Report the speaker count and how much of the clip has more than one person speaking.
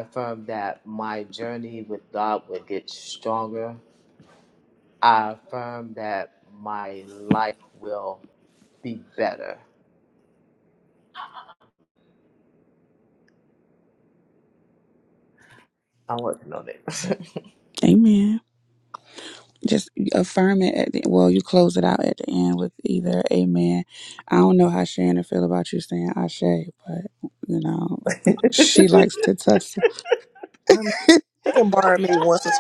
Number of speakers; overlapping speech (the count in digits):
3, no overlap